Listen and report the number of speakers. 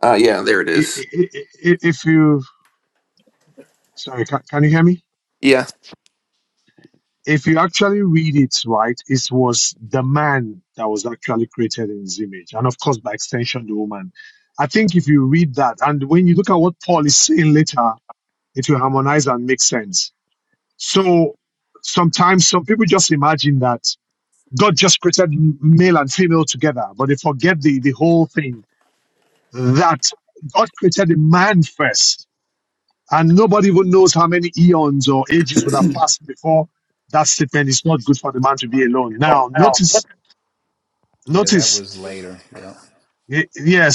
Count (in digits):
3